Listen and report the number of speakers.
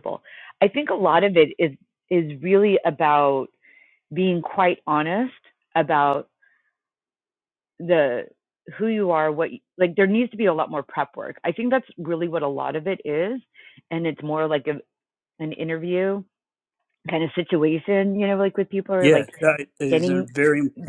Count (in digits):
2